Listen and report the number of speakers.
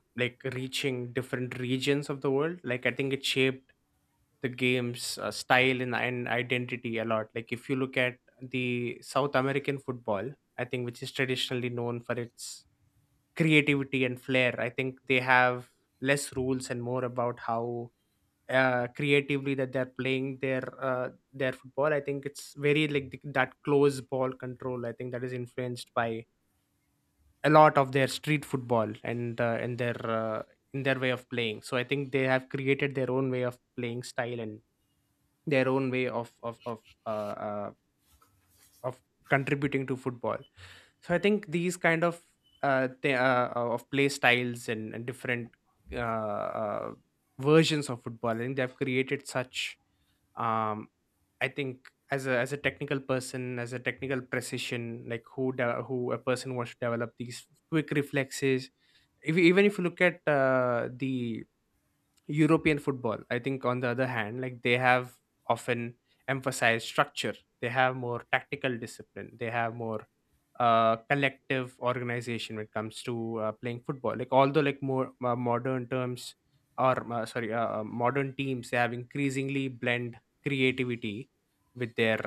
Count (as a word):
one